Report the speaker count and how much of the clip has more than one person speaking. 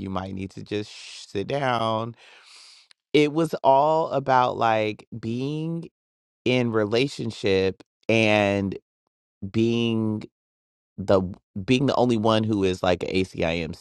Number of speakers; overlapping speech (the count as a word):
one, no overlap